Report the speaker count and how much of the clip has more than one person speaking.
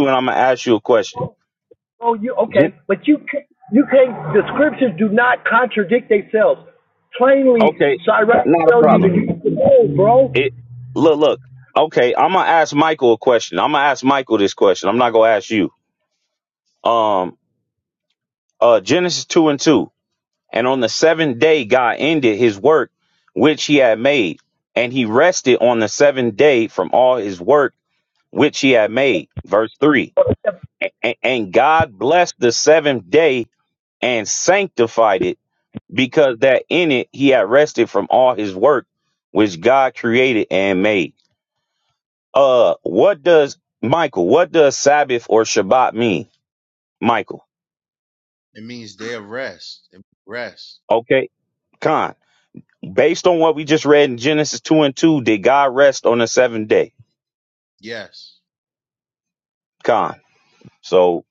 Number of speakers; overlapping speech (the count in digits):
3, about 2%